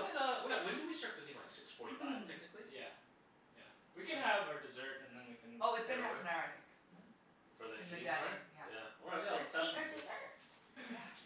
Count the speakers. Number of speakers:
4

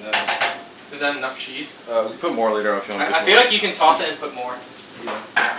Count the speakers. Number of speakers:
2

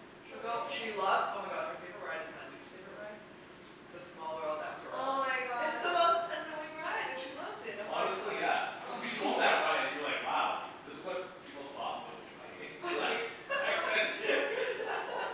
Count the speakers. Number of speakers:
3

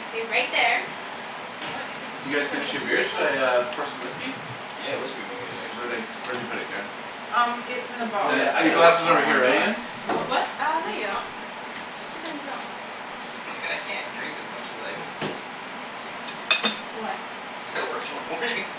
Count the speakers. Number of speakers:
4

